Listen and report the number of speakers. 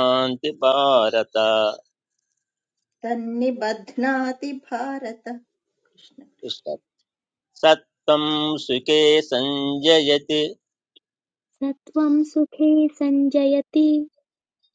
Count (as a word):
three